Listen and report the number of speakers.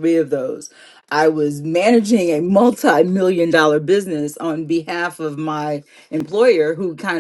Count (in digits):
1